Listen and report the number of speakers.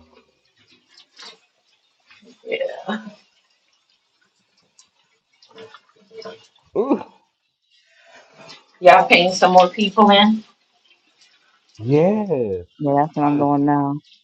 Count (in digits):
3